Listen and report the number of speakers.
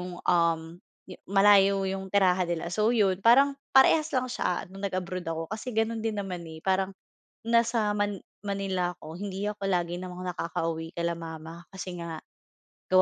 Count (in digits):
1